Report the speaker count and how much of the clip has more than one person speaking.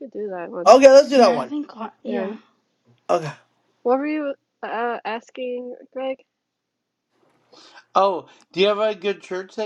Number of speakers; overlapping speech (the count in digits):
4, about 7%